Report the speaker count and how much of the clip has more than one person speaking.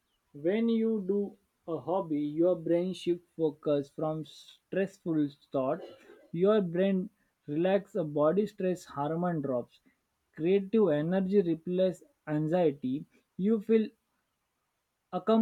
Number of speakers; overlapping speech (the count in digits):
1, no overlap